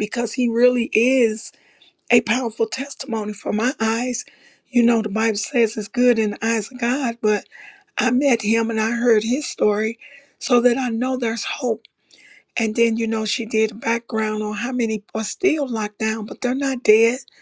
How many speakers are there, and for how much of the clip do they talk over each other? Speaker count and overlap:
1, no overlap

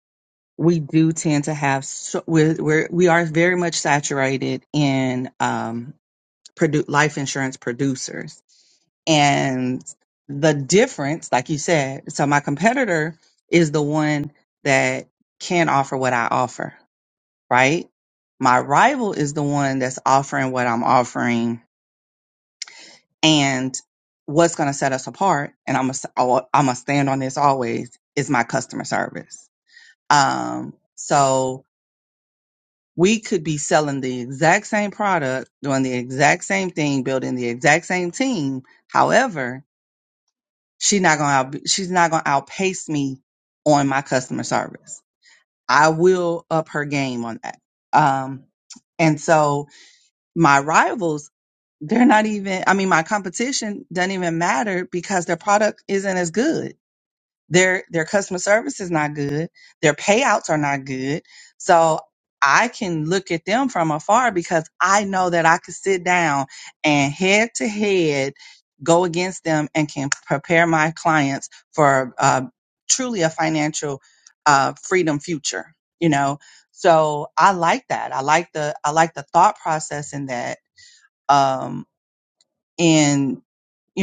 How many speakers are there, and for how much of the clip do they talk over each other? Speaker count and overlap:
1, no overlap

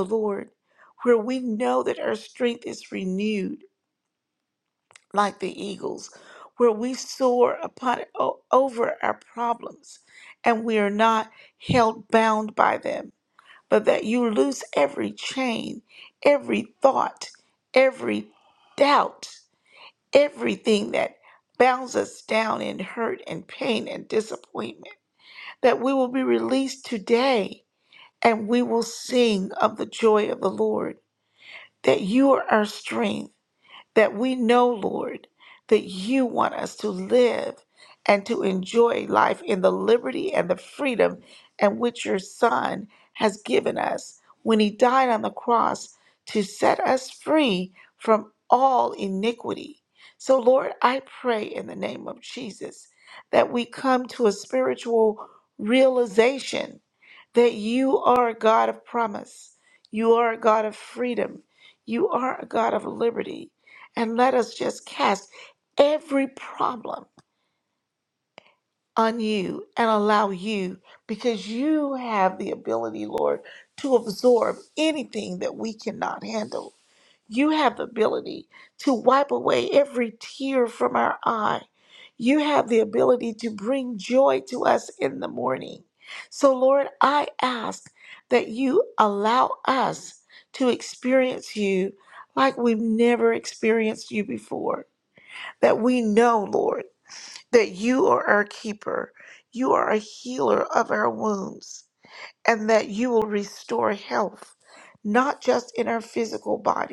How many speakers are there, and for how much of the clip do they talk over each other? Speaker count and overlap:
1, no overlap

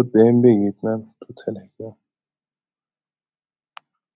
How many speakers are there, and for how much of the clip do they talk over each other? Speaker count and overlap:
1, no overlap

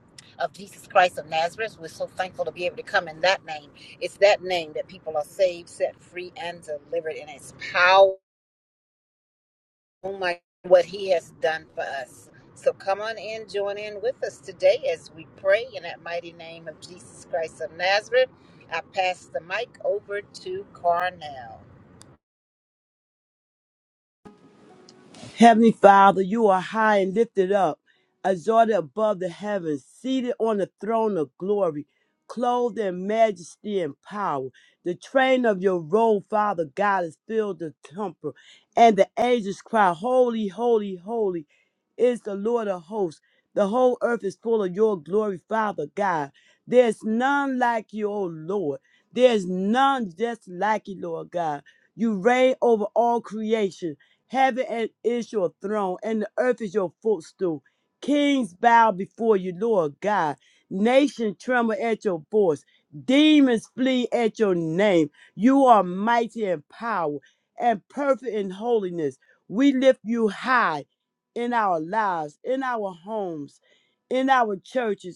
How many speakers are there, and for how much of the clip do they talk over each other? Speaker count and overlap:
2, no overlap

